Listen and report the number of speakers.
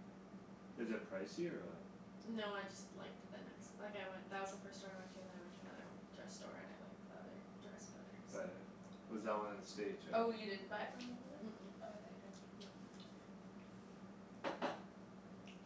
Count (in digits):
3